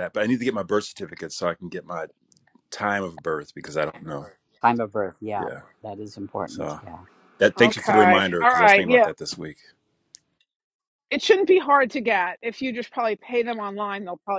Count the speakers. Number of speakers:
3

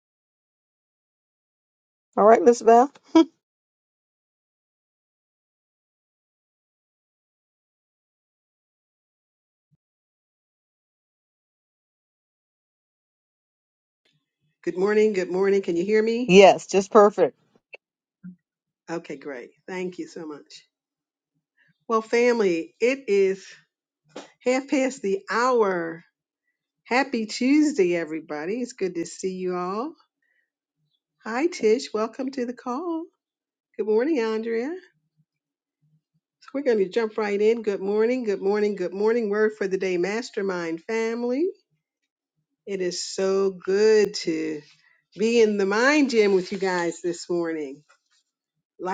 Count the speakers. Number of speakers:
2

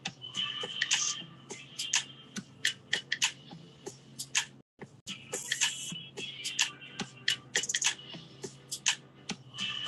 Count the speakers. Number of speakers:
0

